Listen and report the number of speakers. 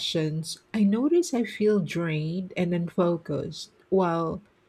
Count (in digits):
1